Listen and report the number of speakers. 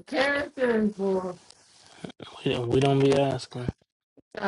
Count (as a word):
two